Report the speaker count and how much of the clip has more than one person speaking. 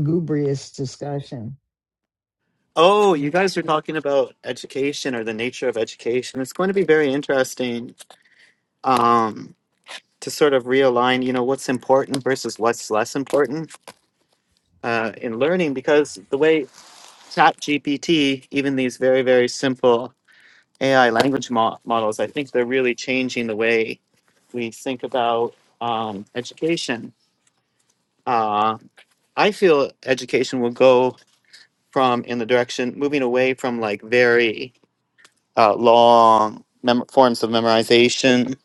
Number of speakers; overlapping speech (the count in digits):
2, no overlap